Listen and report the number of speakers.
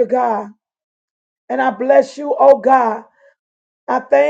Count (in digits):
1